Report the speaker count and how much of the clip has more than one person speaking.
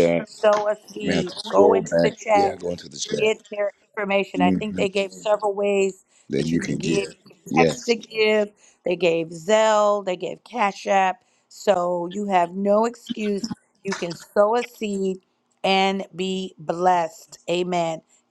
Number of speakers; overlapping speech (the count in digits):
2, about 18%